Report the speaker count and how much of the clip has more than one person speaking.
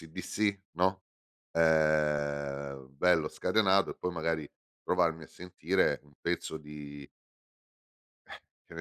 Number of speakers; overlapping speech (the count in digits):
1, no overlap